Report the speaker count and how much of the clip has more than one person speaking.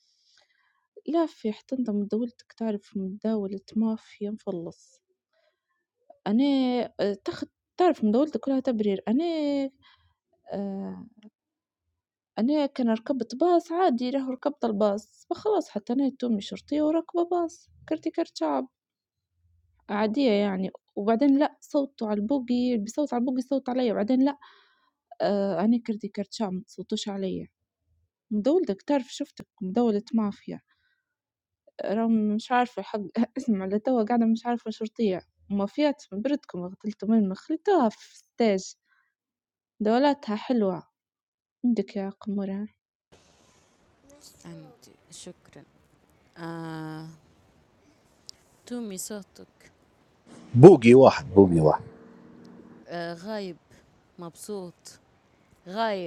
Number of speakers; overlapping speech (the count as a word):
three, no overlap